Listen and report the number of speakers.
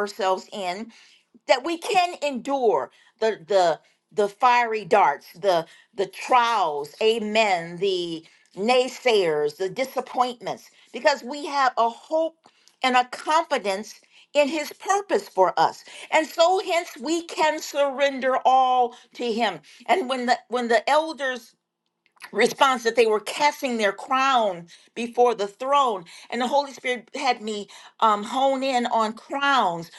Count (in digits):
1